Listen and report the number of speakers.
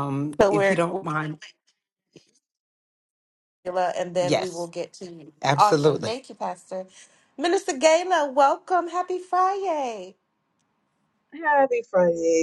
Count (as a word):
three